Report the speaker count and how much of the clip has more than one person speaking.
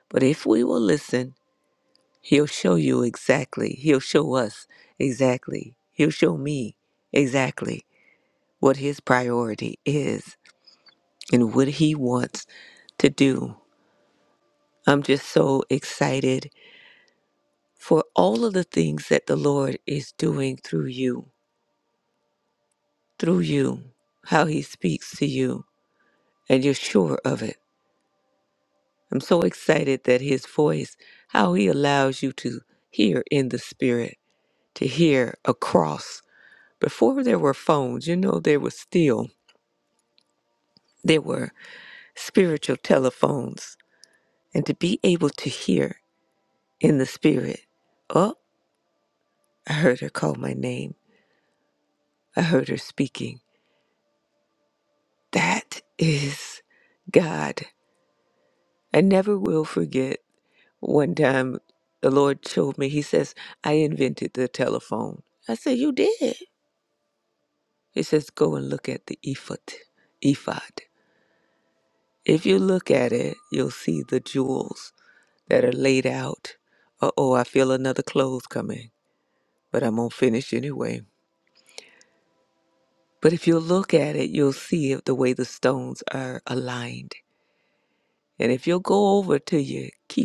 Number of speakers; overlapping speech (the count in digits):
1, no overlap